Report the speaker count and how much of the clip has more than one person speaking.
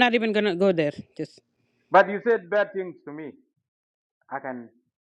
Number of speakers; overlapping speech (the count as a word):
two, no overlap